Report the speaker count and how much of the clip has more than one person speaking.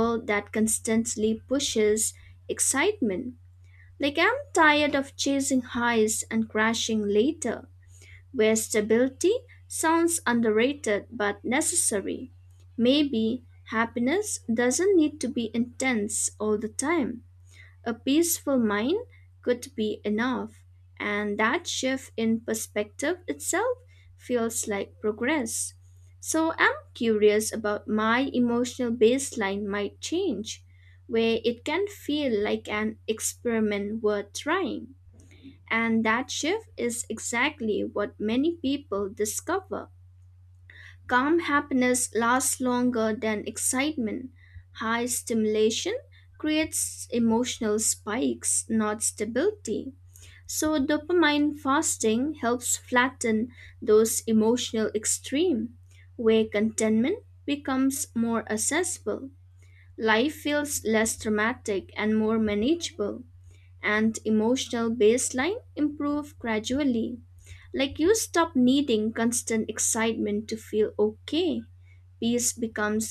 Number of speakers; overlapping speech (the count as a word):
one, no overlap